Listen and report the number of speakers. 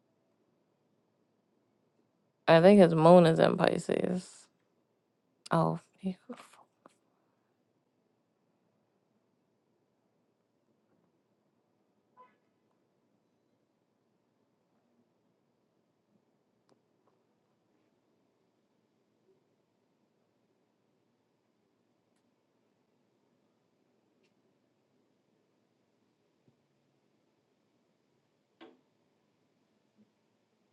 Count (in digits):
1